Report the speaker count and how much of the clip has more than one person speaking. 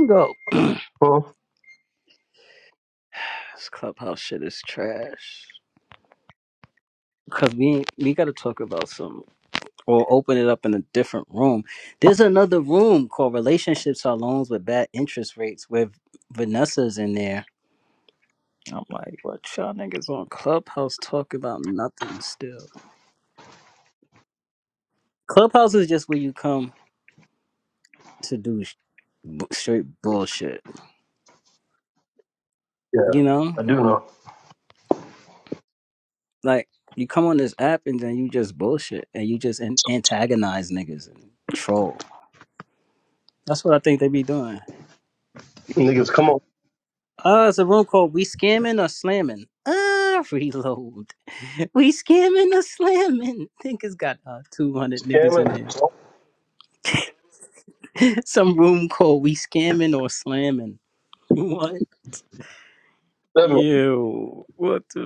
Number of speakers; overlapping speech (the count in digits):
2, about 1%